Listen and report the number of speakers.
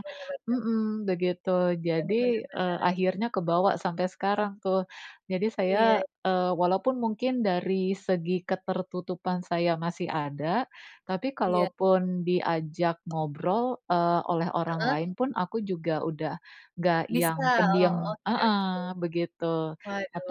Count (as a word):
two